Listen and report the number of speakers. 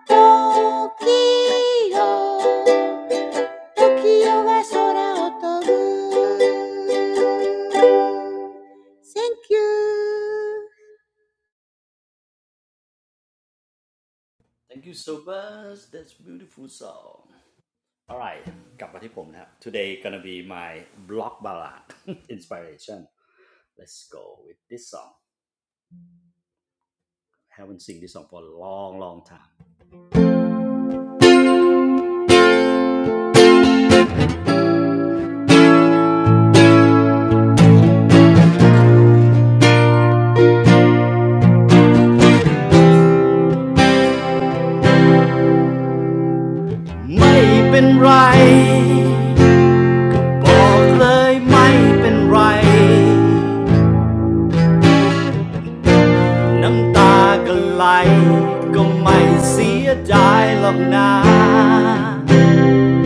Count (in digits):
2